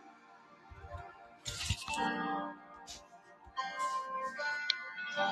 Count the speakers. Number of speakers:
0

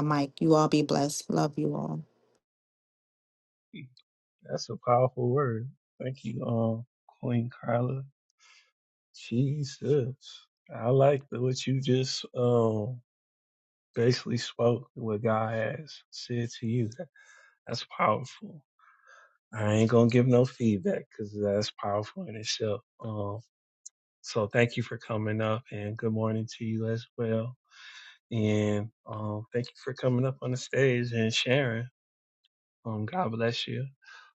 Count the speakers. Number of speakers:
2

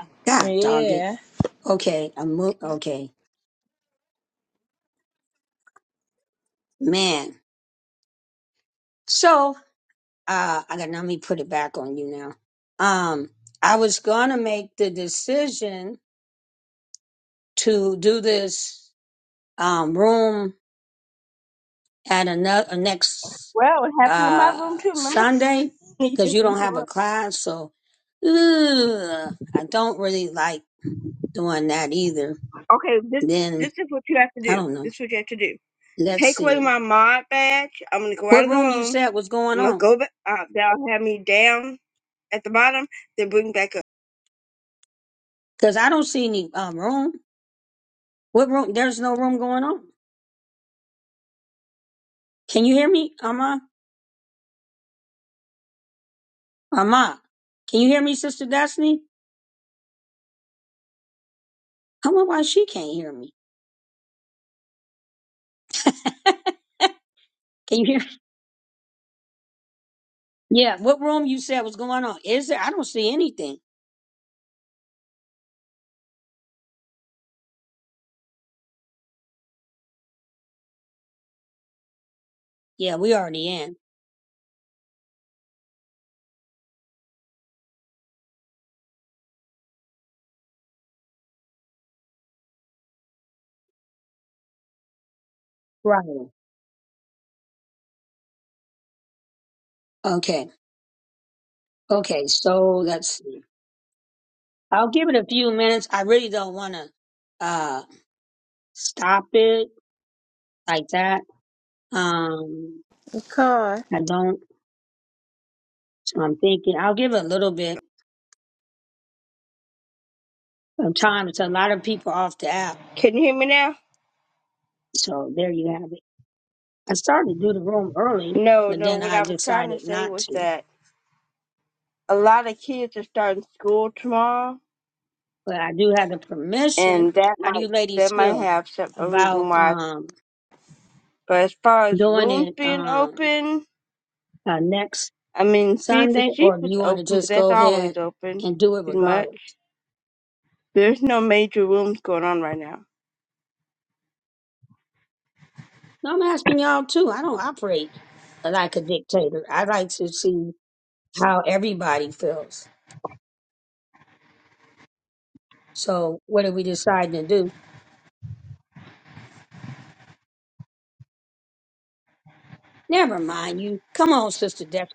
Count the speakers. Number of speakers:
3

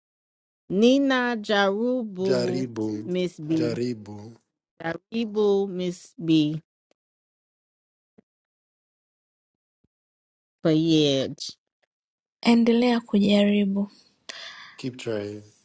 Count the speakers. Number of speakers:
3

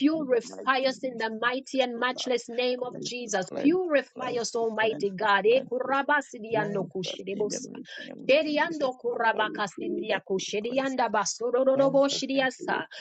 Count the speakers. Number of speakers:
2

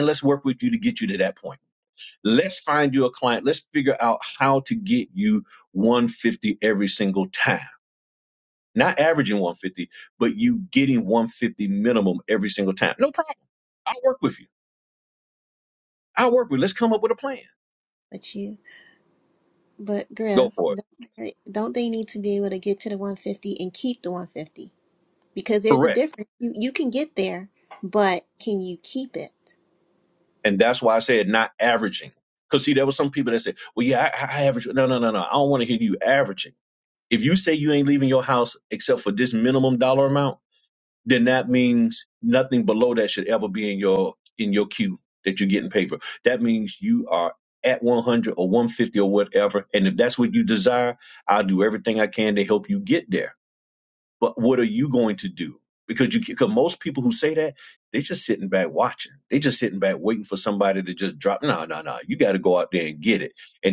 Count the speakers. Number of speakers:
2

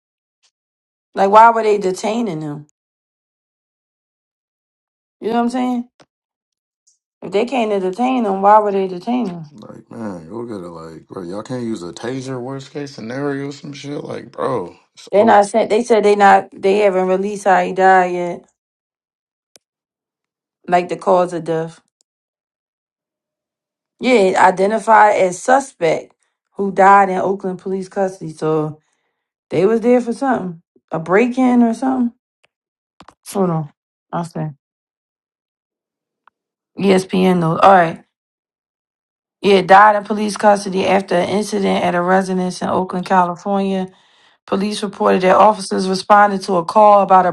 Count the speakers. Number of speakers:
2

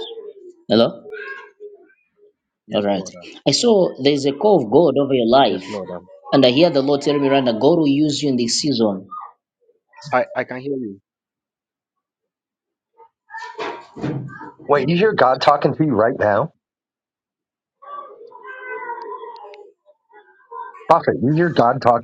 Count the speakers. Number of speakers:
3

